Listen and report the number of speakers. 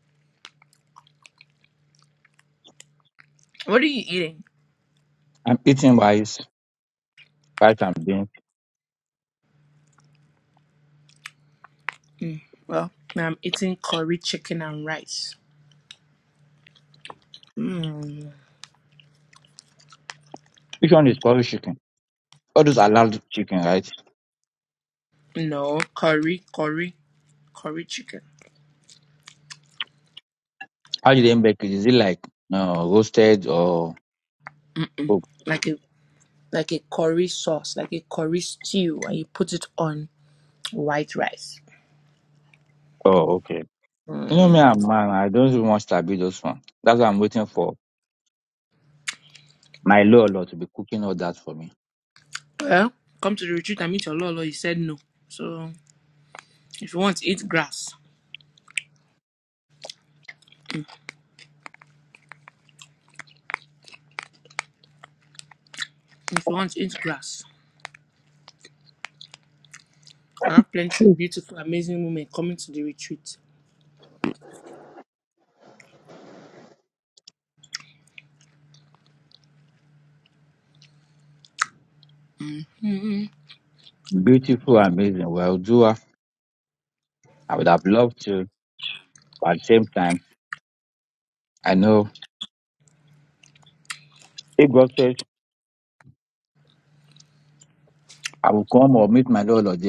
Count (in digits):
2